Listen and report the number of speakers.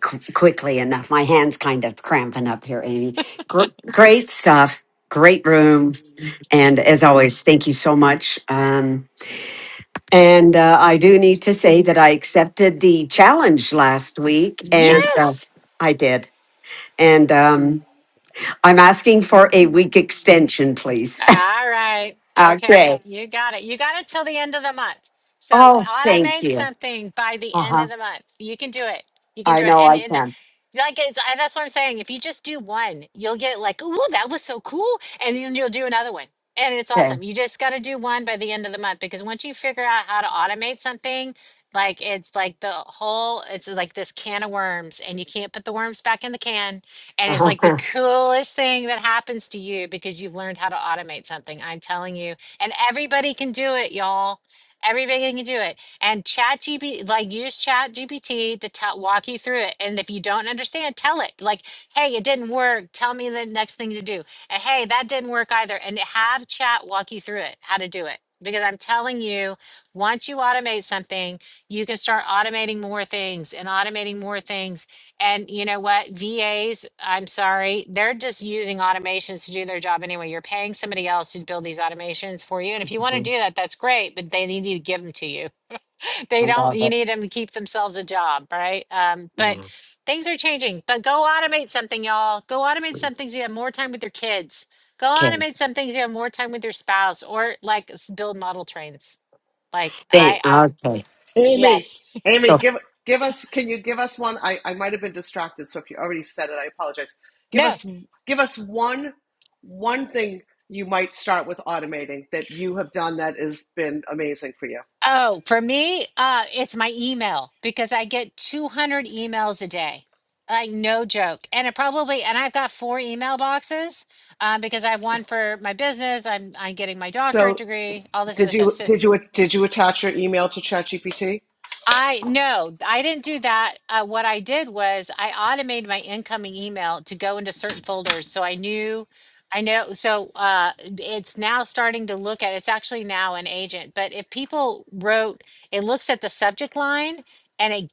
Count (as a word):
three